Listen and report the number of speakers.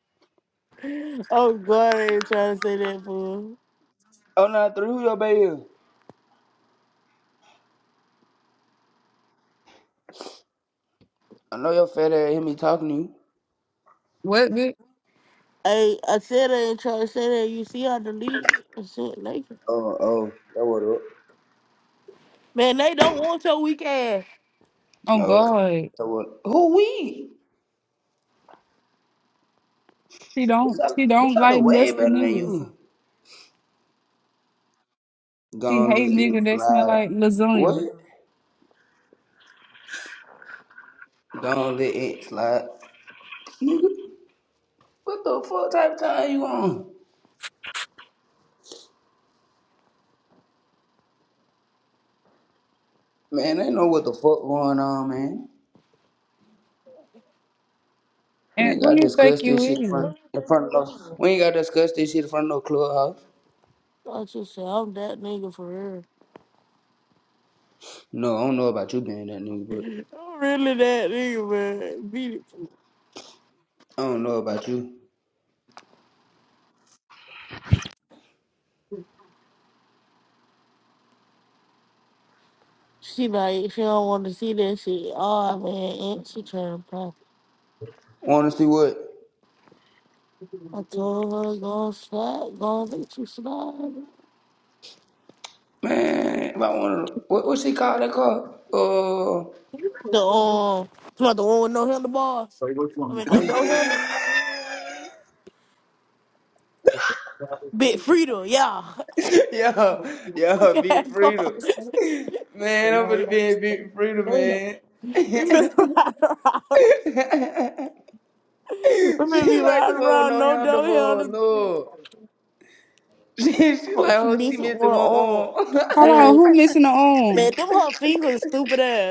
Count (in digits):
3